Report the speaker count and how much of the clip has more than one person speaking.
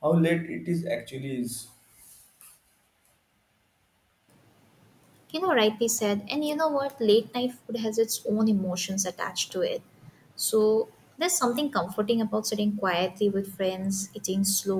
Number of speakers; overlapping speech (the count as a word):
two, no overlap